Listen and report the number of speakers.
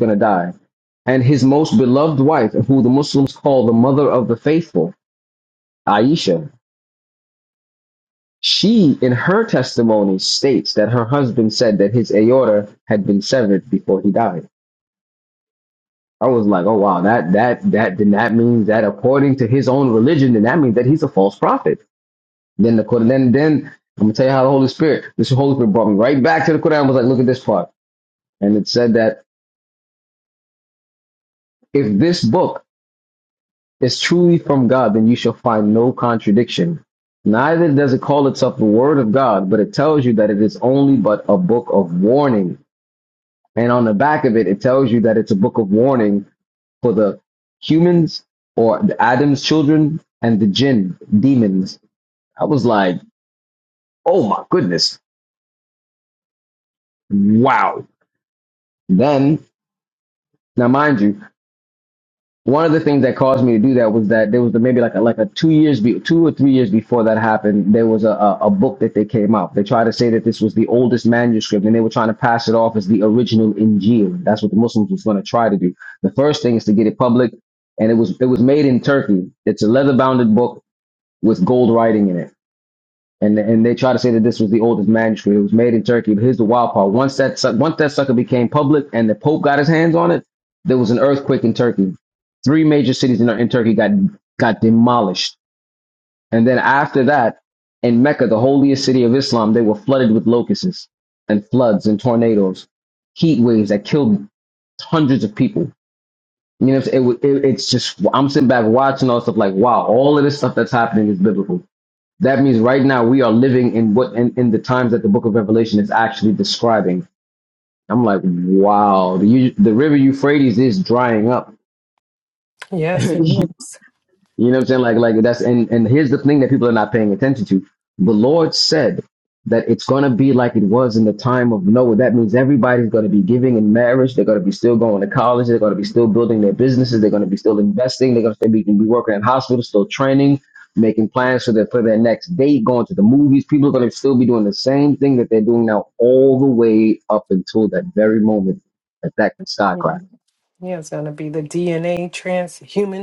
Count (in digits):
2